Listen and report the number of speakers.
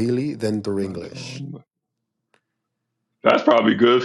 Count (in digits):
2